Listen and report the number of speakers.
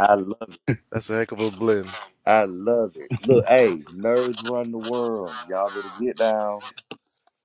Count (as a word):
two